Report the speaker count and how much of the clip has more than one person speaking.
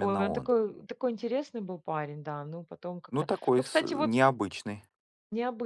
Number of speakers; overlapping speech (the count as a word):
two, about 25%